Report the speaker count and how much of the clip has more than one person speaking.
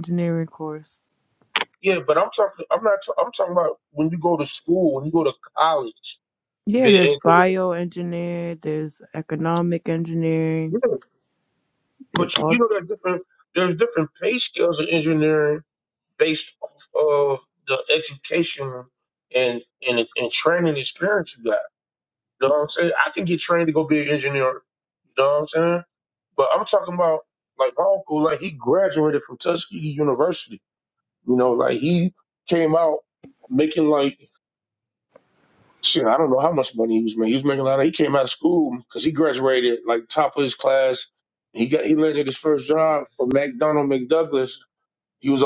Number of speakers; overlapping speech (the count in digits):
2, about 3%